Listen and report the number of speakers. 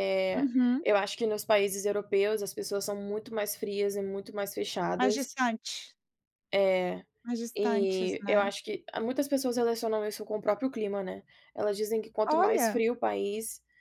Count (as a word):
two